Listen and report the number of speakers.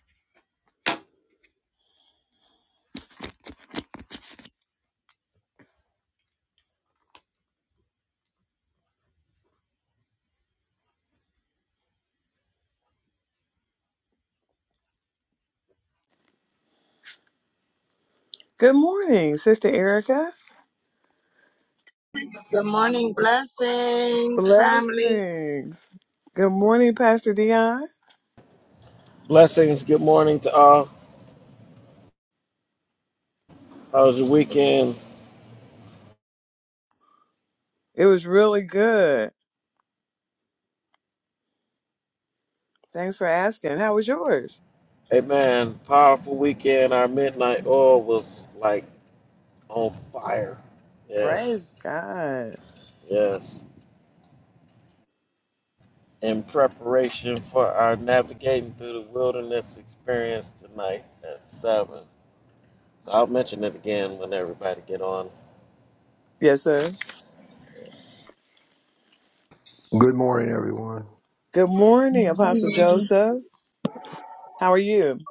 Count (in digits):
4